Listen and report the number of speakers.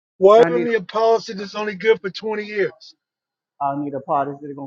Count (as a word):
two